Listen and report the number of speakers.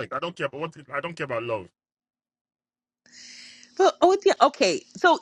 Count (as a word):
two